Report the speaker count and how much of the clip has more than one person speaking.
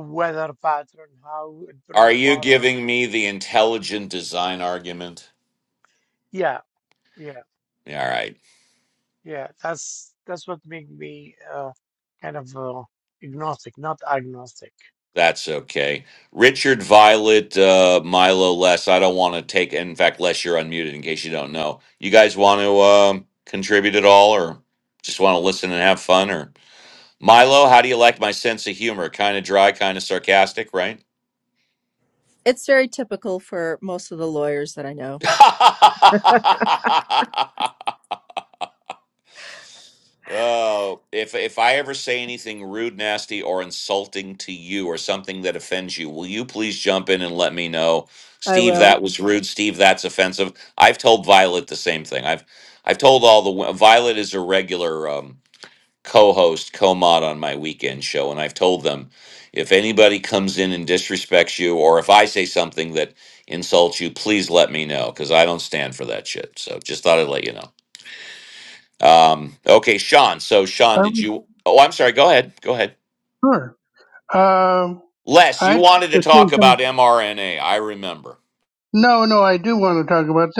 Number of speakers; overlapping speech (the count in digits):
4, about 4%